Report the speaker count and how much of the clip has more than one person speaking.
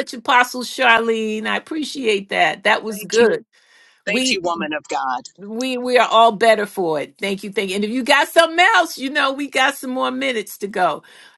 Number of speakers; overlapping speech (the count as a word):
two, about 7%